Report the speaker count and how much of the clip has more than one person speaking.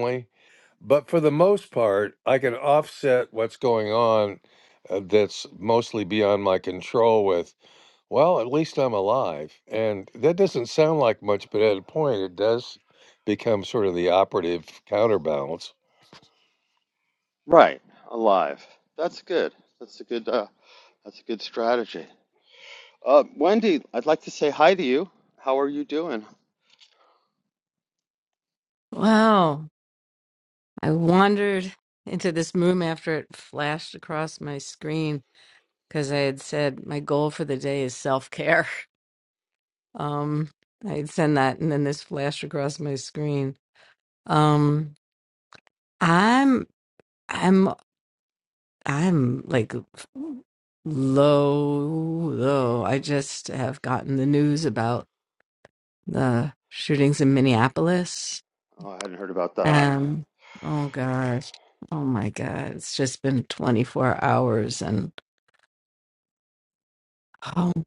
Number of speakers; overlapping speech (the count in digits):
3, about 1%